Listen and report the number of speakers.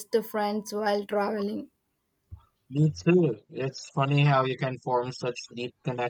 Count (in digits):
2